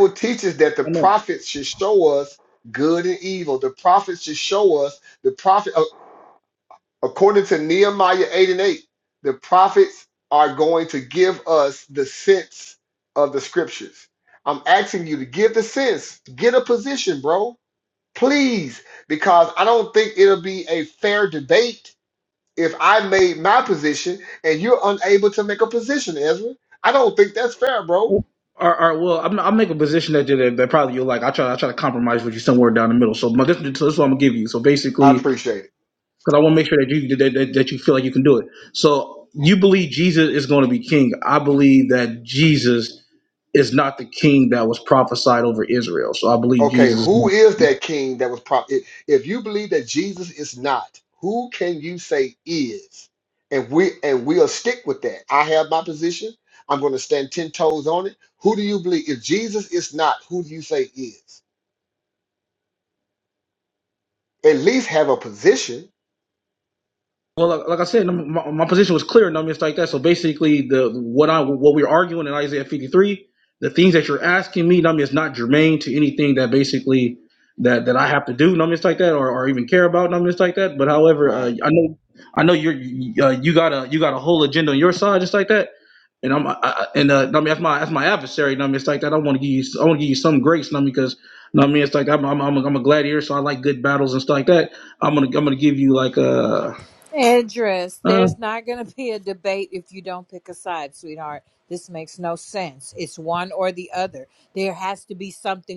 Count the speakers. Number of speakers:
3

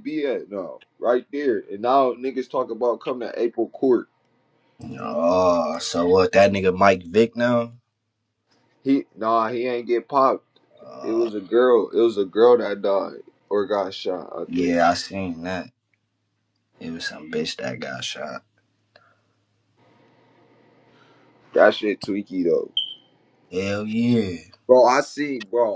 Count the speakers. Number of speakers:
2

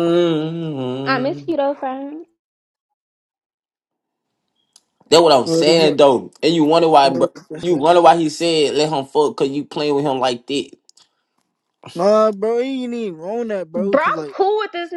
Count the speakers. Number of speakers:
3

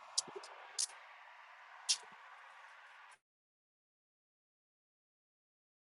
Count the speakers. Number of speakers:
0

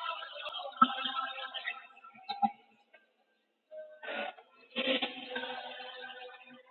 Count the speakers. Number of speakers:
0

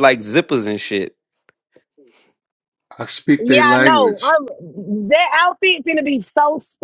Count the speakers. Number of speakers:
3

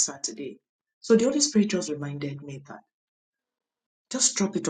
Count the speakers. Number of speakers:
1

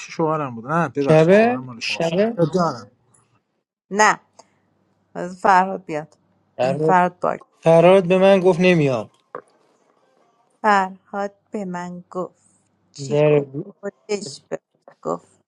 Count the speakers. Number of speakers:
3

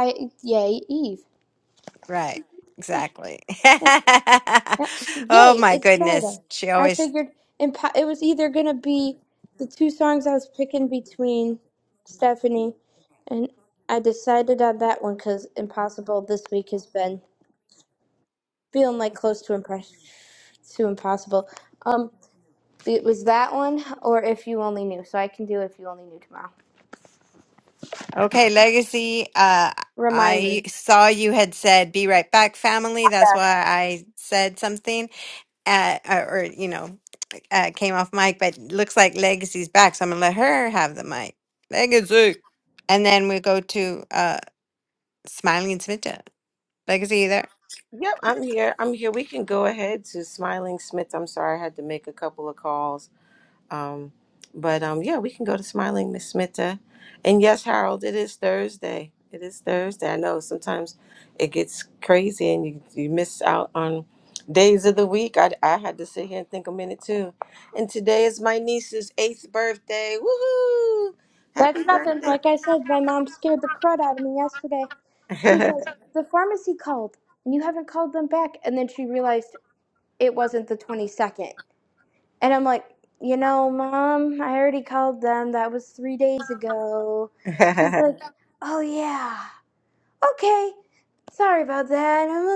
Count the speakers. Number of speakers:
3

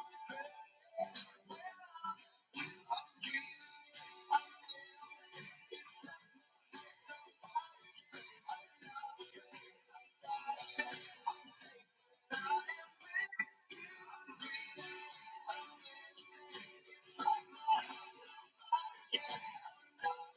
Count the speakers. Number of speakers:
0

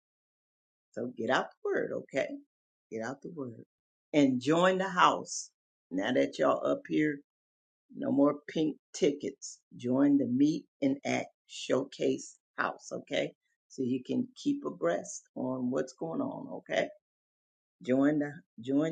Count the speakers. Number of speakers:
1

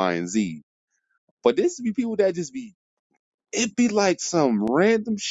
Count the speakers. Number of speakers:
1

